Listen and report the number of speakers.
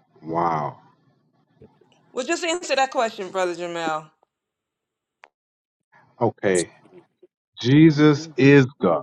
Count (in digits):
2